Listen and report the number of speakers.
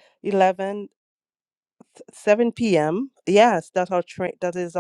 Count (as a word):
one